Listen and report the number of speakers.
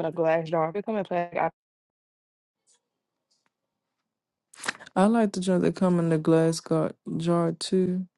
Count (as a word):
two